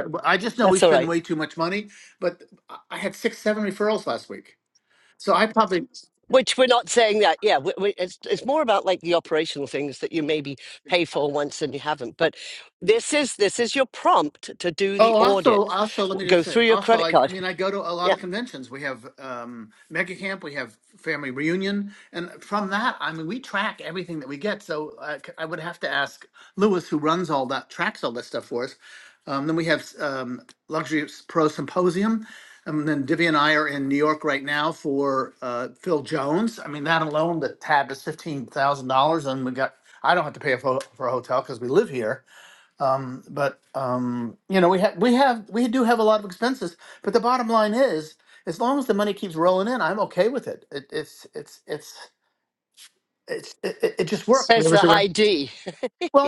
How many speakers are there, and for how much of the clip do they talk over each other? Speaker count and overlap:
2, about 5%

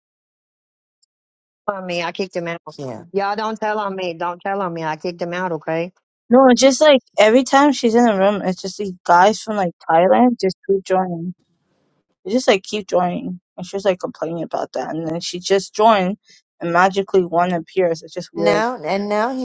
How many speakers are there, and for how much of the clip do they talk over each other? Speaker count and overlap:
3, about 1%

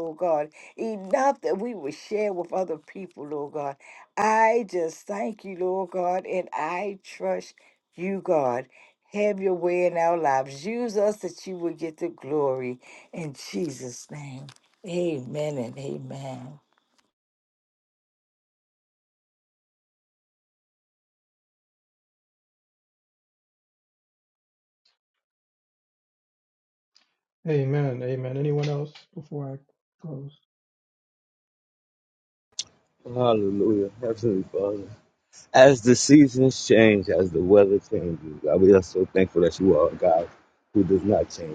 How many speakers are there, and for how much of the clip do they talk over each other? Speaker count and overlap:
3, no overlap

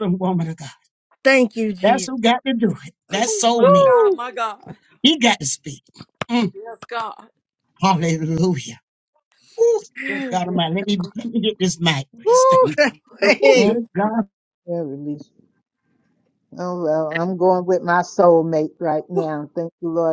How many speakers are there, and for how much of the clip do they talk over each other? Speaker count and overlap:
4, about 13%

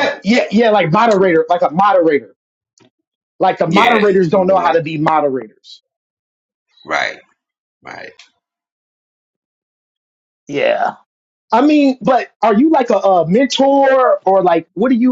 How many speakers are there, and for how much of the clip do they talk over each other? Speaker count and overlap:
2, about 8%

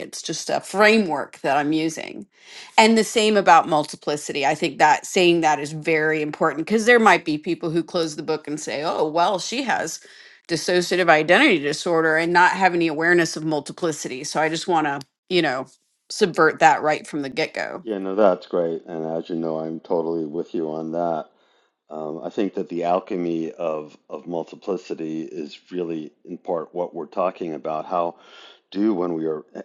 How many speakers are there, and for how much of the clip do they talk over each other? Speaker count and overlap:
2, no overlap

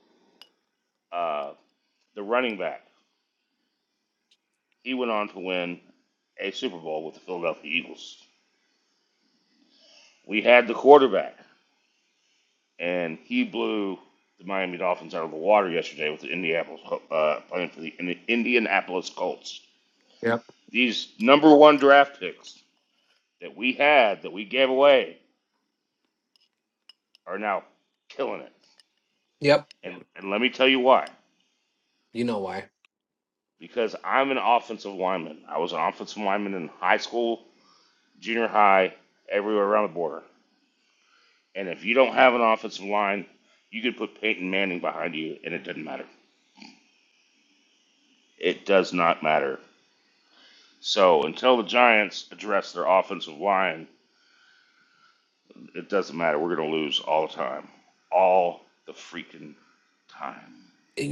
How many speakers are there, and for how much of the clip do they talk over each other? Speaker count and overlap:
2, no overlap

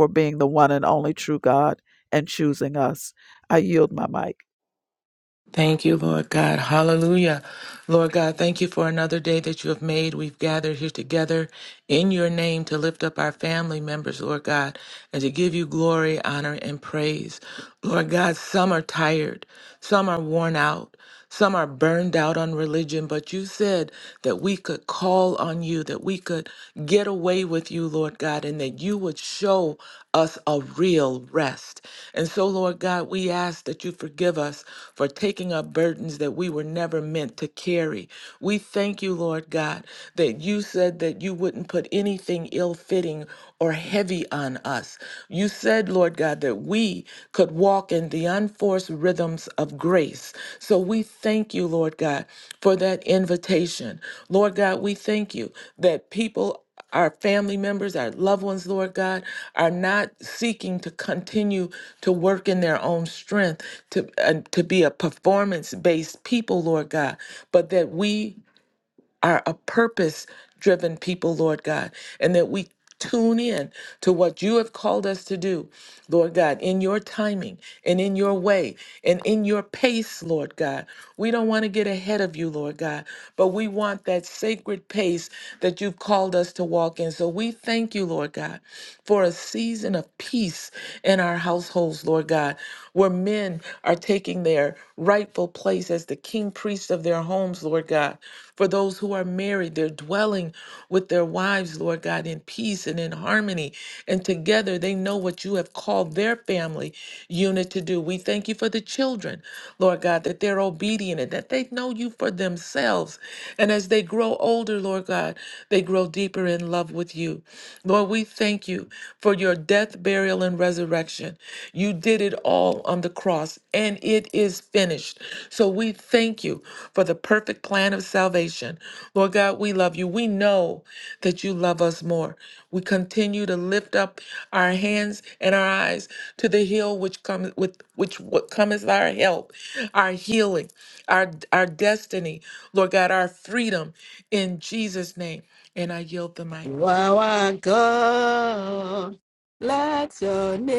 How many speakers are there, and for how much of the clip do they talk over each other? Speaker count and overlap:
3, under 1%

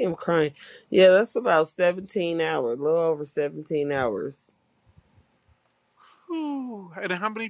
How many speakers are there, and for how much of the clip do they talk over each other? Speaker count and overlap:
2, no overlap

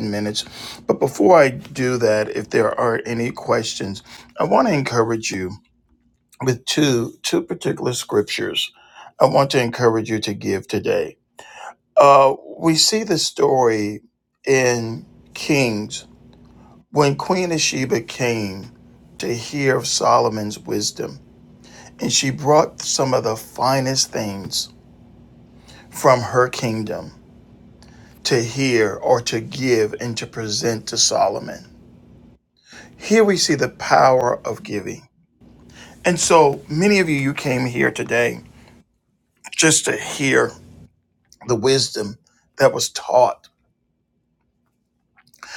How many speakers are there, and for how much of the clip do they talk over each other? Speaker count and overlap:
1, no overlap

